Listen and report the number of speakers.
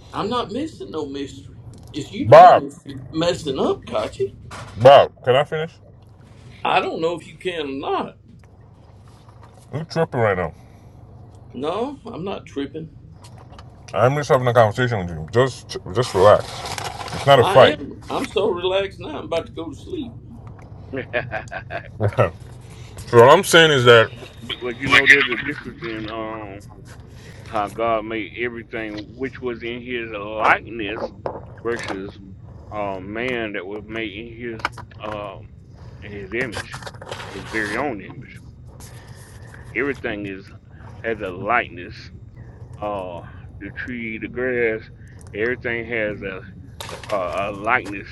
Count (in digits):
3